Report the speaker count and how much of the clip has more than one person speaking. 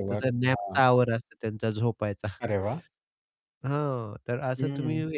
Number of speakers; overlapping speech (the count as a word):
two, about 25%